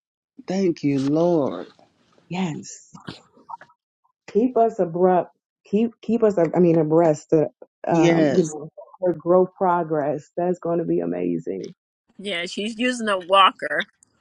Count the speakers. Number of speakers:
3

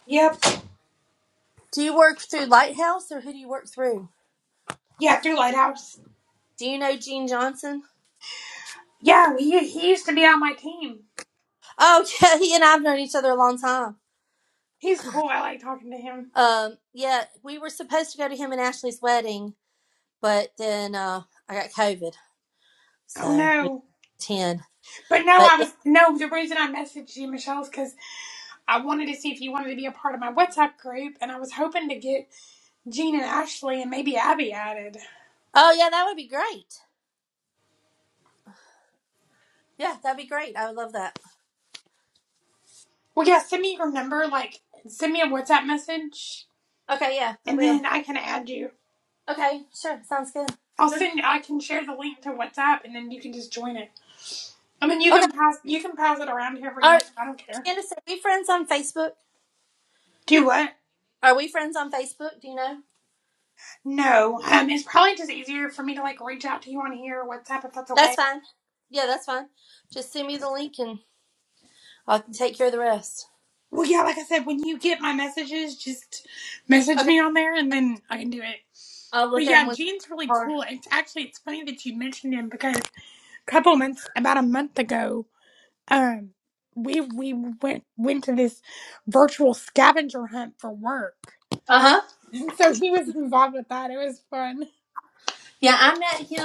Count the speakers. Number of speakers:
2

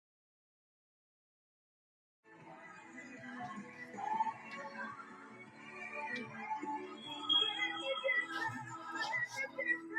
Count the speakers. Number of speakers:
0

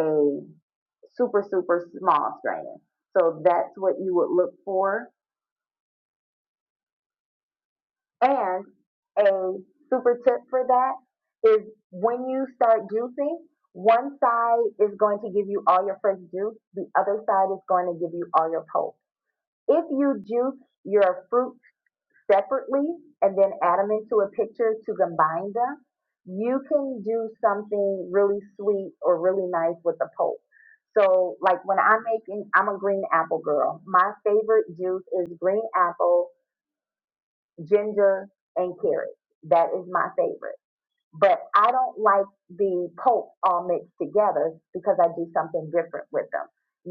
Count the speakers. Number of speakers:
1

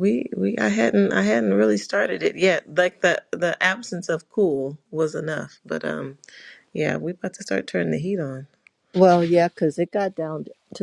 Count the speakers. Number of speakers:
2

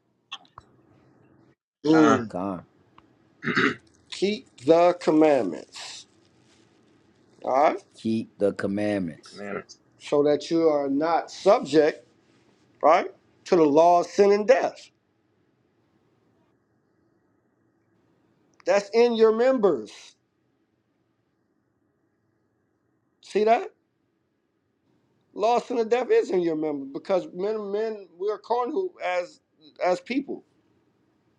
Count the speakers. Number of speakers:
3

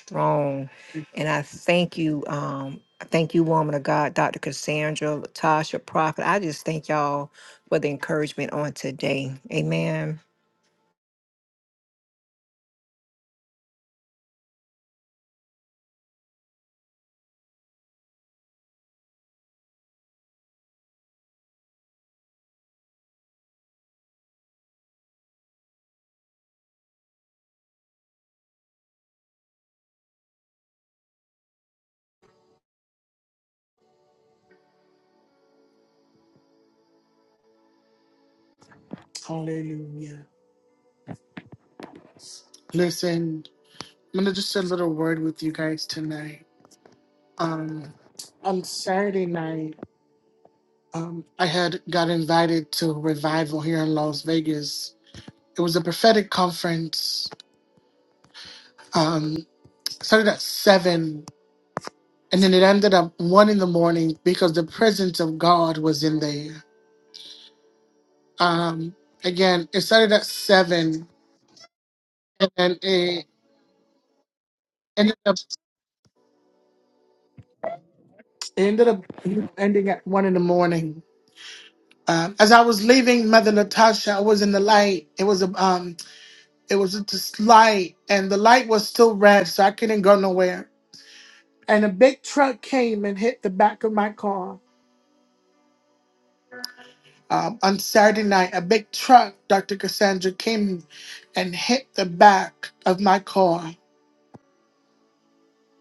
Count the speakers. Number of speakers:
2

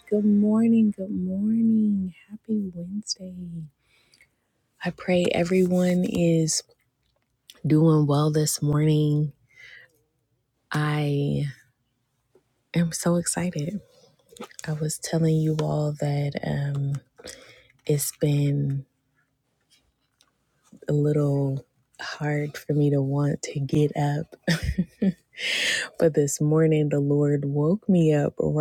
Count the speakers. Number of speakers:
1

